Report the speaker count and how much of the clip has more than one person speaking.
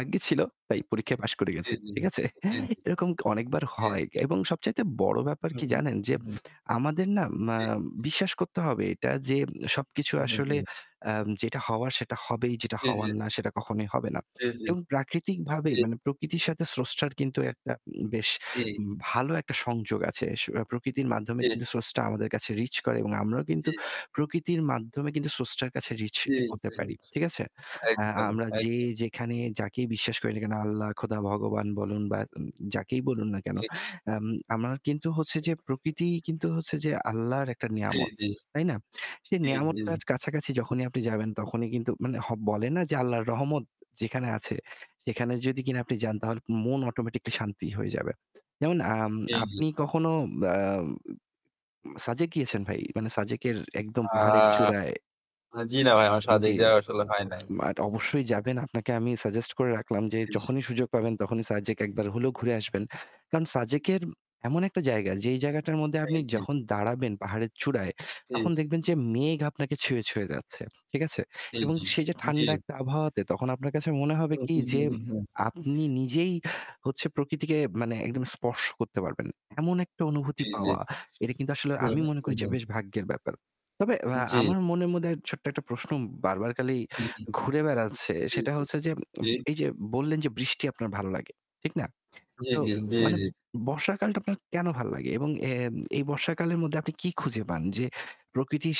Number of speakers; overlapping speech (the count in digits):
2, about 7%